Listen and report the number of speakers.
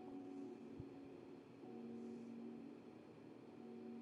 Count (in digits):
0